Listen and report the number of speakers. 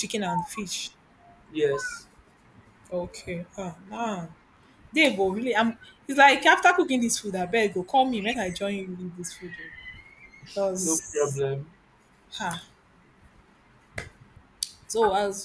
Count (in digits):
2